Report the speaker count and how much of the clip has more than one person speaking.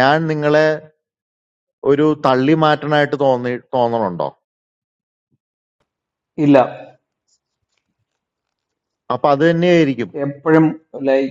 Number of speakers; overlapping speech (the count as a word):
two, no overlap